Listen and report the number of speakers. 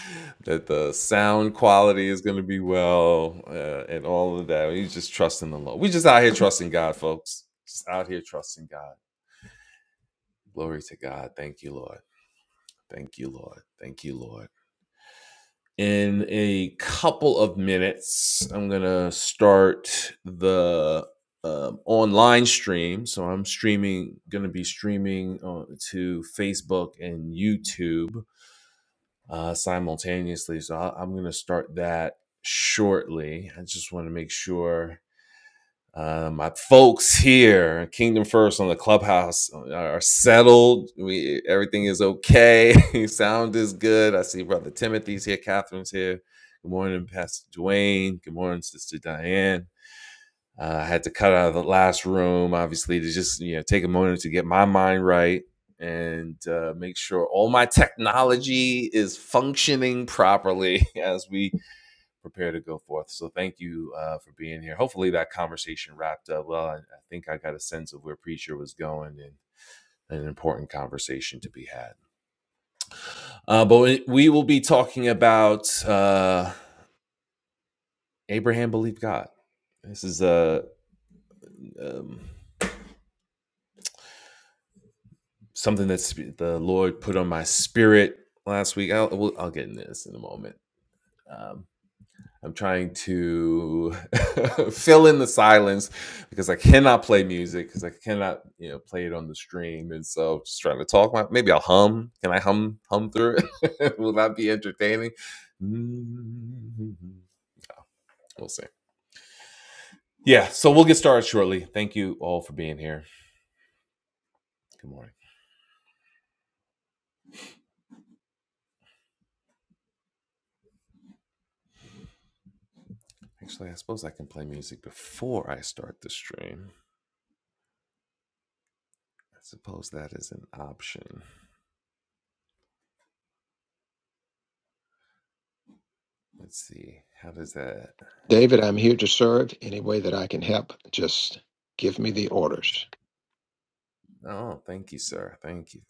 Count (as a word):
two